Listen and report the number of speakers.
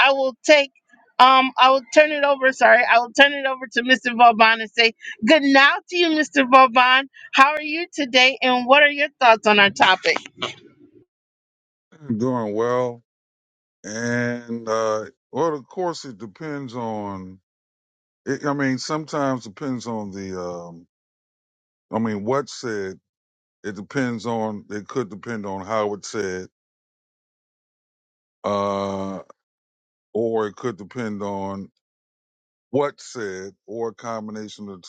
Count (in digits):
2